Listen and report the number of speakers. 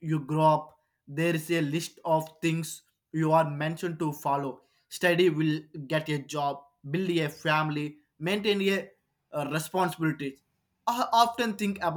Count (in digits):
1